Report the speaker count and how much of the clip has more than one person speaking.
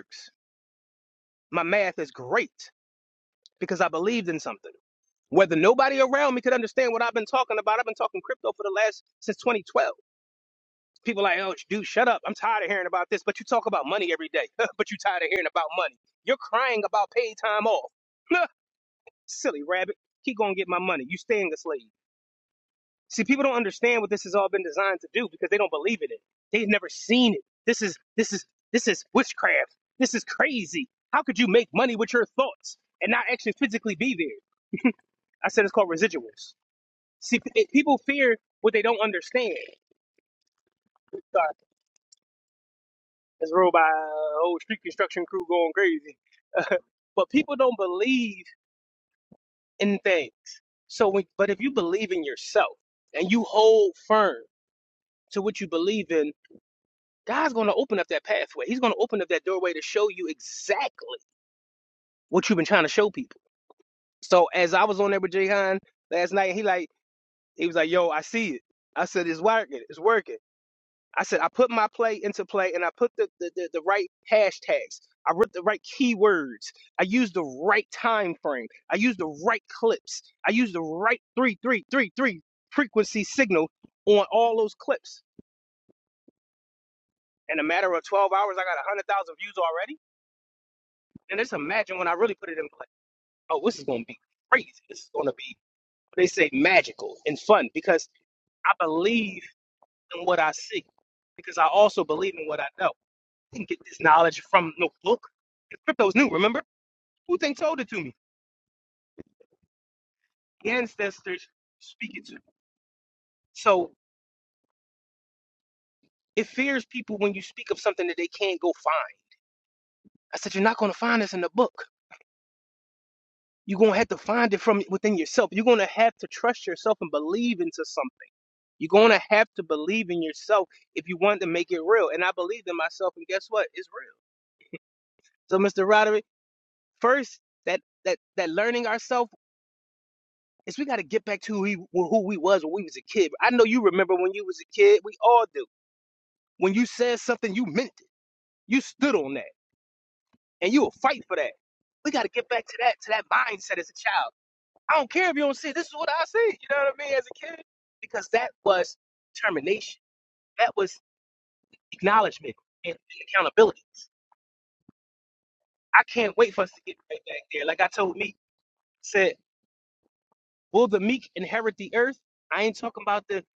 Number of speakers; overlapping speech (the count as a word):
one, no overlap